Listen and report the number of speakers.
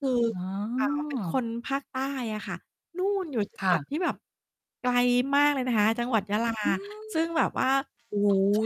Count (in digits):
2